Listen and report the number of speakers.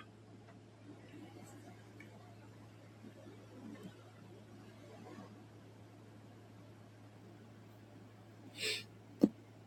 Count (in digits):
0